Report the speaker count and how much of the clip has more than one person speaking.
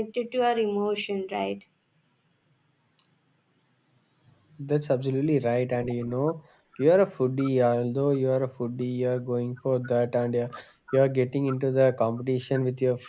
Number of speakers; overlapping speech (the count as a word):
two, no overlap